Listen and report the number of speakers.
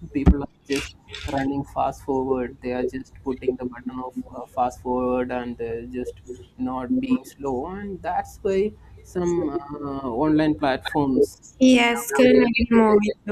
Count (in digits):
2